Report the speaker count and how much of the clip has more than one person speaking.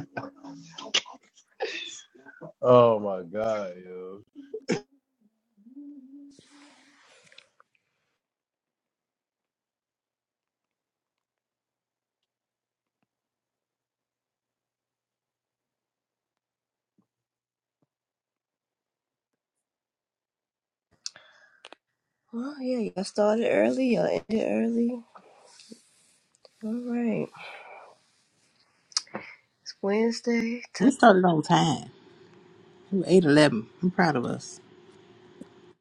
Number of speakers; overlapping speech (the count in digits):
3, under 1%